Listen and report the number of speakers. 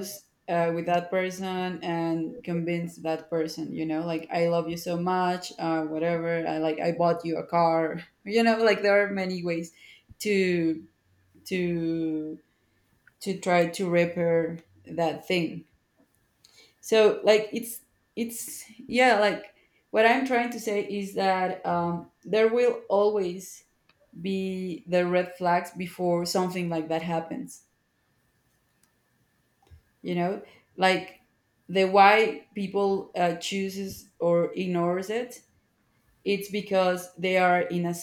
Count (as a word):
one